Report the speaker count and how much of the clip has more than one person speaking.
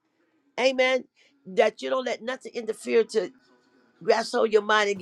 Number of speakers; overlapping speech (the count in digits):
1, no overlap